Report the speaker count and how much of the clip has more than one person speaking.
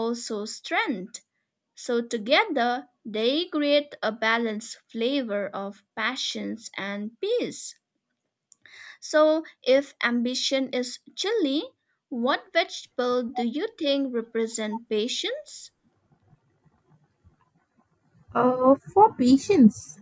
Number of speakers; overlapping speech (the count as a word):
two, no overlap